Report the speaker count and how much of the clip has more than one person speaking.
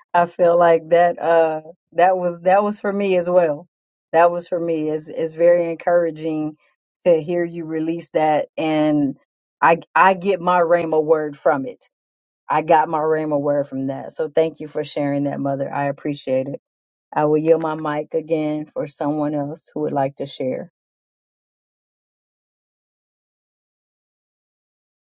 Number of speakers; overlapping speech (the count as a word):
one, no overlap